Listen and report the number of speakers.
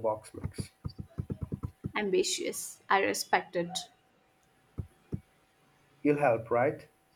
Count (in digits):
2